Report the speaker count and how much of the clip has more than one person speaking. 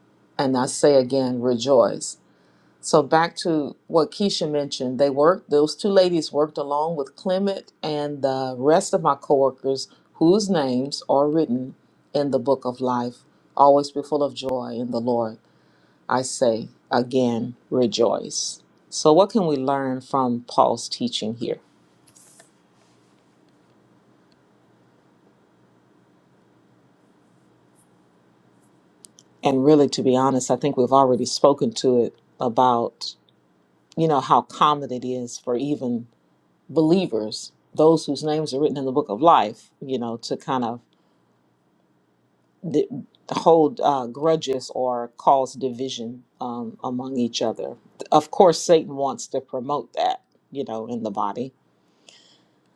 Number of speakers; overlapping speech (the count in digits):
1, no overlap